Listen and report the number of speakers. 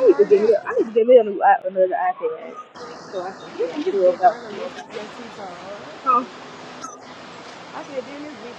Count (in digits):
2